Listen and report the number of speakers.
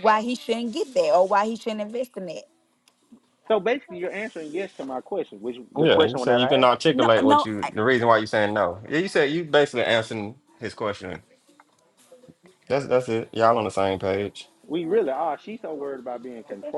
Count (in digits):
3